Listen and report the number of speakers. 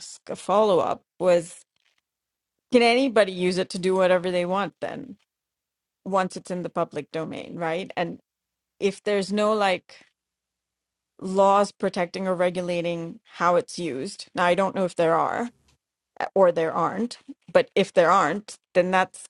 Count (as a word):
one